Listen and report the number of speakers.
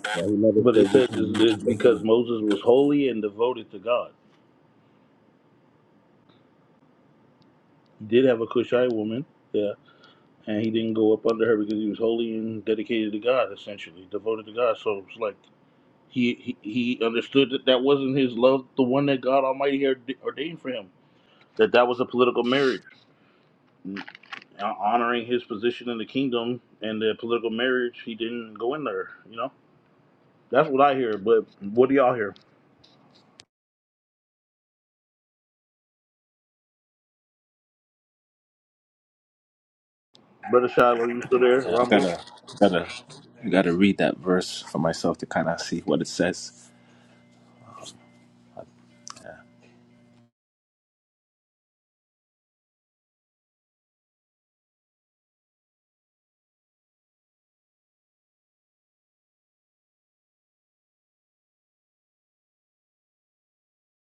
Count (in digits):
3